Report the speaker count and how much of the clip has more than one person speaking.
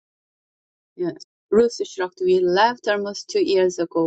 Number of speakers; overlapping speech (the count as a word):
one, no overlap